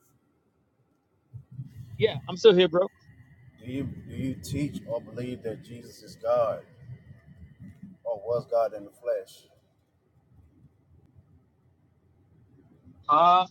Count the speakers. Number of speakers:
two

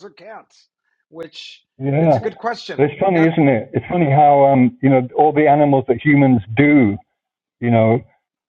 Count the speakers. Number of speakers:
two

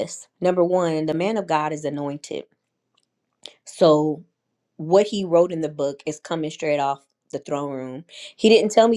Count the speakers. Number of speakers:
one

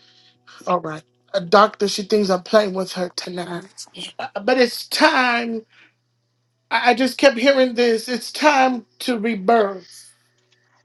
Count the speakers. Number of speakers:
one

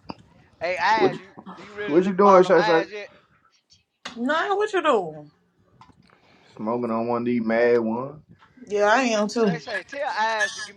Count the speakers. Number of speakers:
three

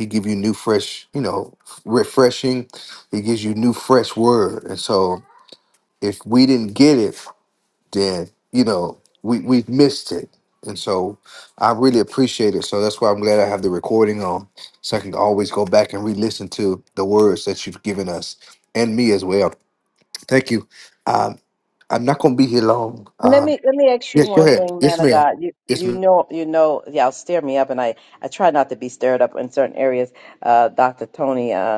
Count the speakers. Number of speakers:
two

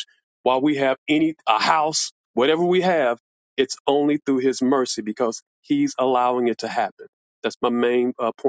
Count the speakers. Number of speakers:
one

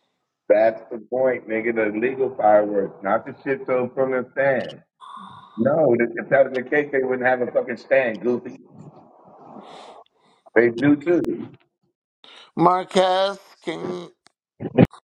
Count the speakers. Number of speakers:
two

